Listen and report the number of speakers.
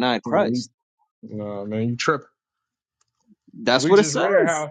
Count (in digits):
2